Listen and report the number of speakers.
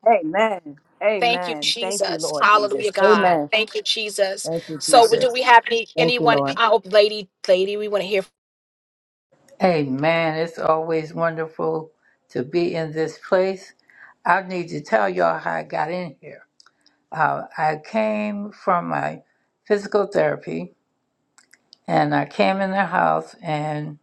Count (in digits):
3